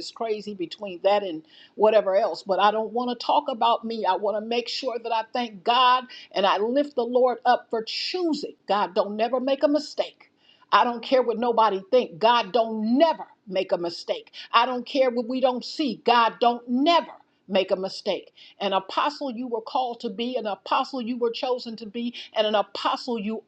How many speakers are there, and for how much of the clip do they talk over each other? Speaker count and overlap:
1, no overlap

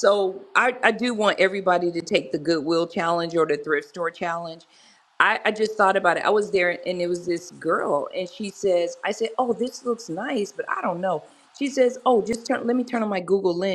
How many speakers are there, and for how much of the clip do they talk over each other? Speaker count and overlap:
1, no overlap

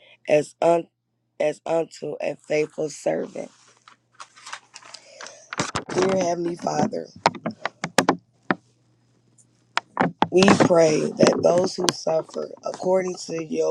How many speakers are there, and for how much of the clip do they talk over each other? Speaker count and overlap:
1, no overlap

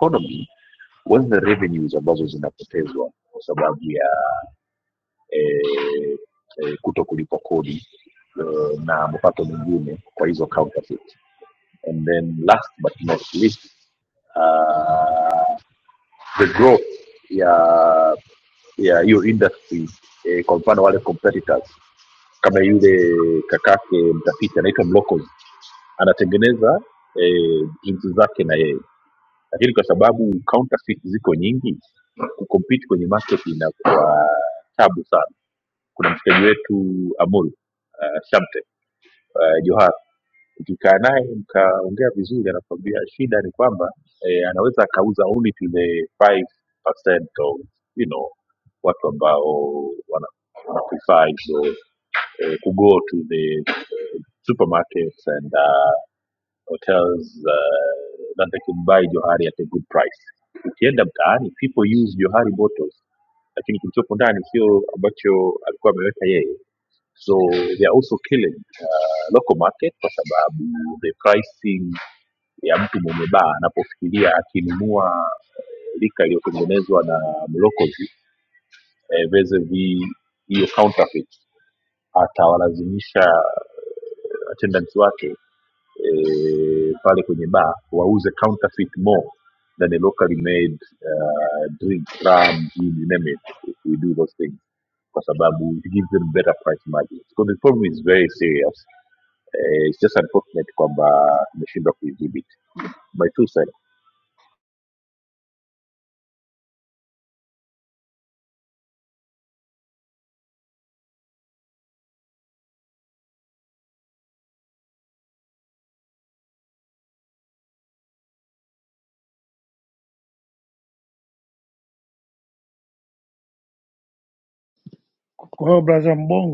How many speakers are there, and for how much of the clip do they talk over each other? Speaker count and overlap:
2, no overlap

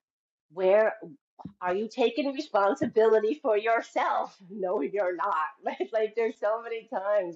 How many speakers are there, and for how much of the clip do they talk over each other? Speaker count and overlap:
1, no overlap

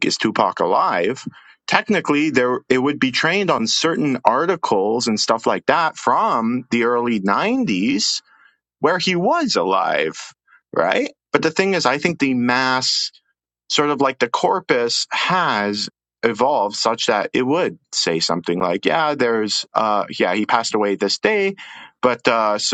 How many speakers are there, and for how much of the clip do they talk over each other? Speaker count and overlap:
1, no overlap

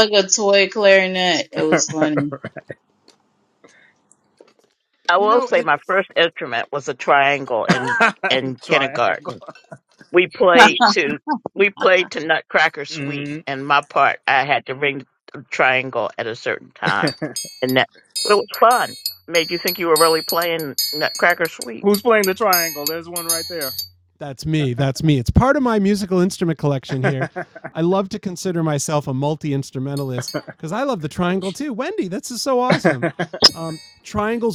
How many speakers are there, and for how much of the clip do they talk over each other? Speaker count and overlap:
4, about 4%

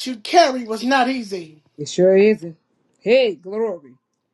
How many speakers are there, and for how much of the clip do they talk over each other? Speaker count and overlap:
2, no overlap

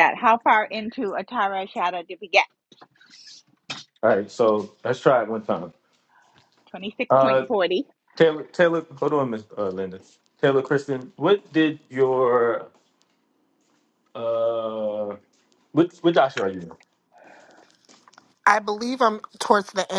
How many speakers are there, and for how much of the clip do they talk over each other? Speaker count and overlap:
3, about 2%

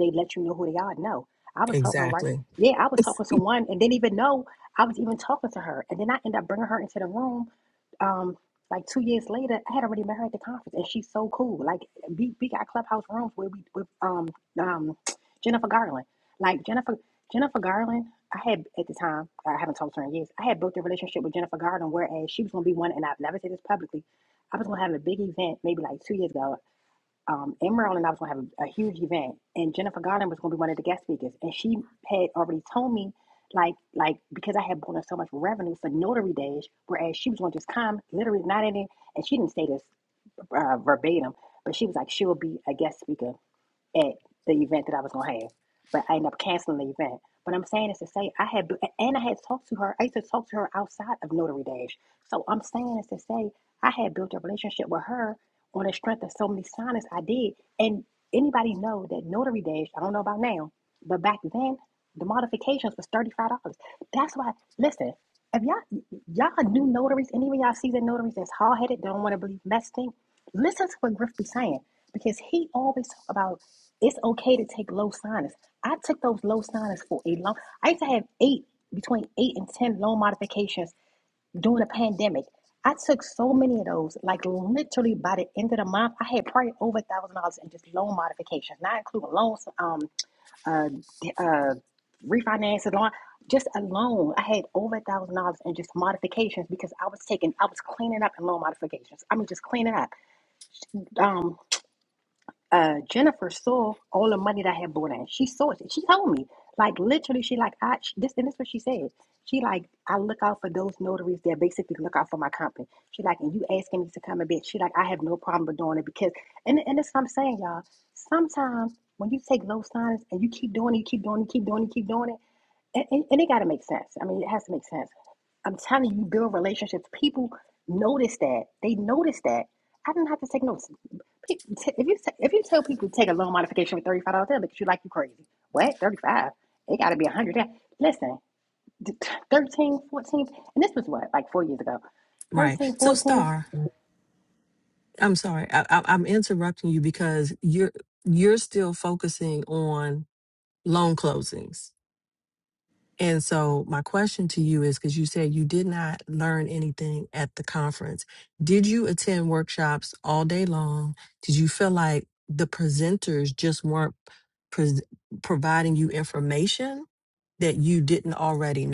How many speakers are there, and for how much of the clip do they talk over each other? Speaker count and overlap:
2, about 1%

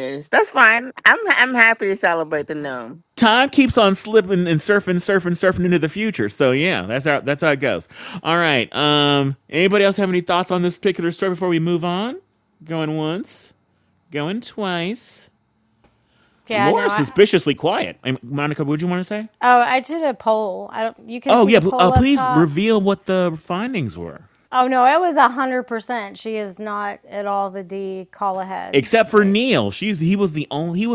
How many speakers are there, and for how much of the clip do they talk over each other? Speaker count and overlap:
3, about 8%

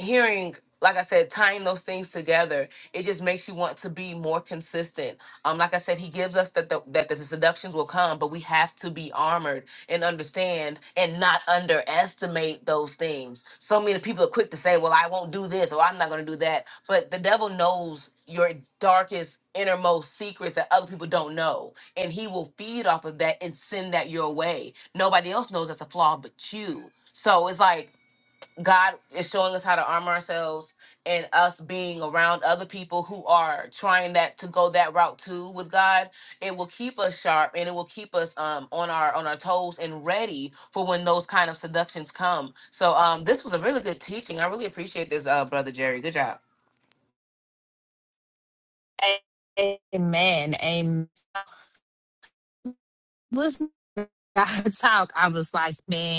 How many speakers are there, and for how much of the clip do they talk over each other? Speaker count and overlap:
2, no overlap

